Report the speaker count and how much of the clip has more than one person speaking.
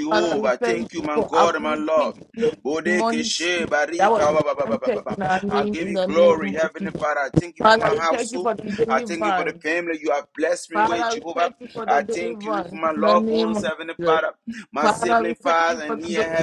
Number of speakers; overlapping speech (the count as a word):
two, about 75%